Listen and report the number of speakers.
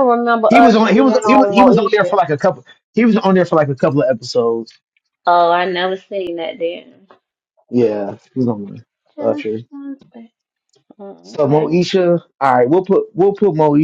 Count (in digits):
2